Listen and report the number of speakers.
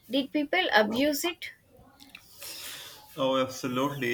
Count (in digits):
2